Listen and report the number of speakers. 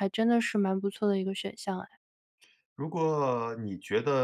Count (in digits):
2